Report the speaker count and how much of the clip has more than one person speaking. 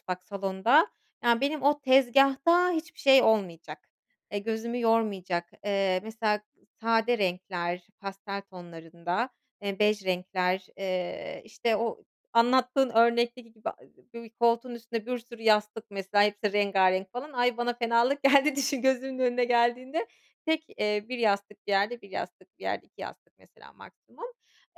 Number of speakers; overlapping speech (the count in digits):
1, no overlap